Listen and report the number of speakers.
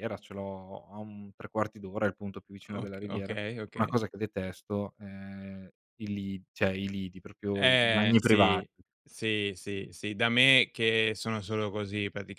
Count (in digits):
2